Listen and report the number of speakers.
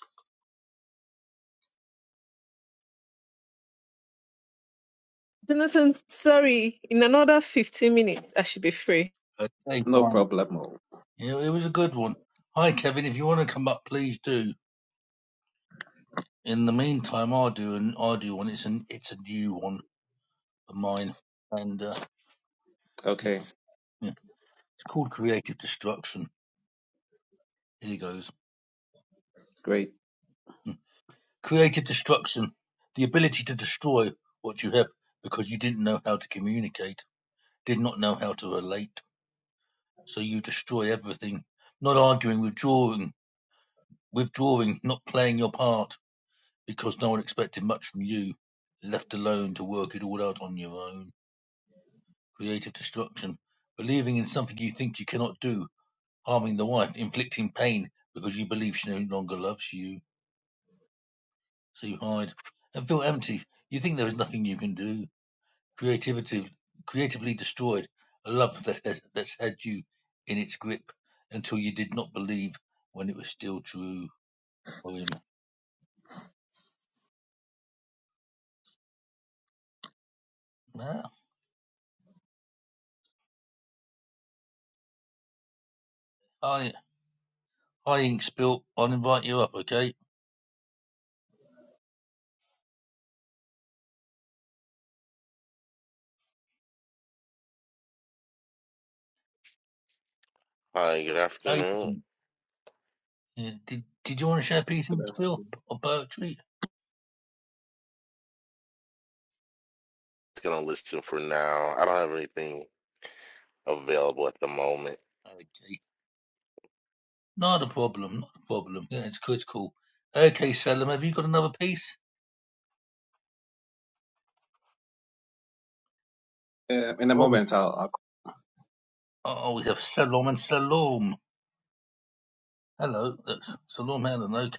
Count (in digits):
4